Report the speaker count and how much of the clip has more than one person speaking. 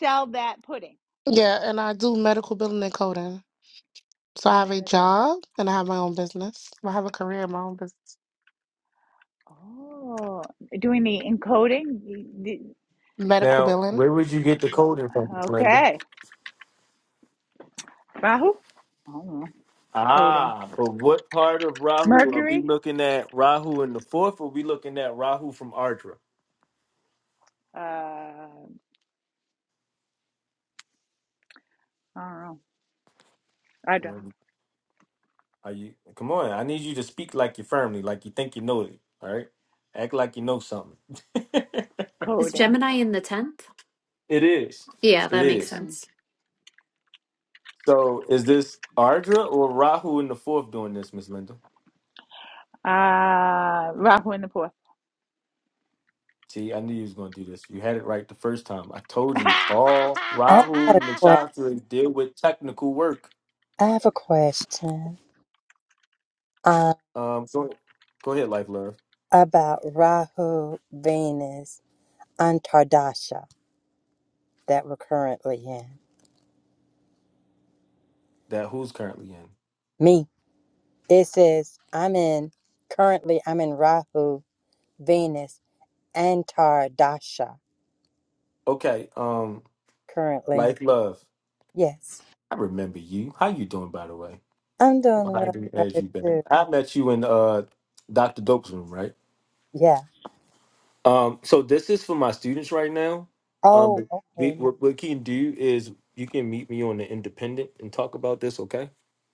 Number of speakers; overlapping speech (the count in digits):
5, about 6%